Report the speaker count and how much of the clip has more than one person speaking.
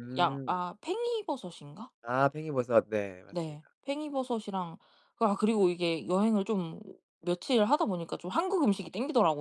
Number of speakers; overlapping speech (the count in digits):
2, about 6%